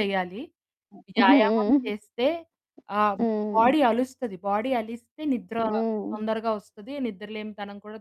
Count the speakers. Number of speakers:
2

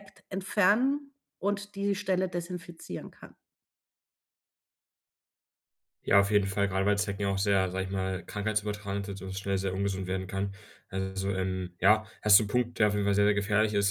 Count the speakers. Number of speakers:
2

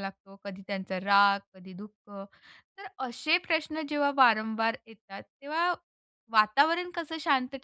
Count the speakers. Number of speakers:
1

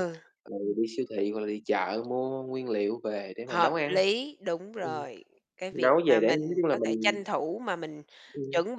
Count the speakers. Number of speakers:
2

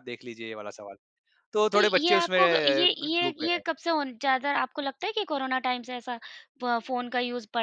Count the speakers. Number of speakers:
2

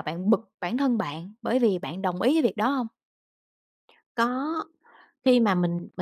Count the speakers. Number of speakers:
2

